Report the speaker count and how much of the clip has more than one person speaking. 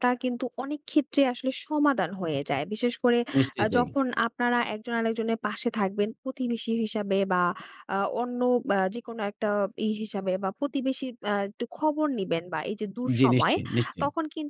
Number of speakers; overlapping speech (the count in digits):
2, about 6%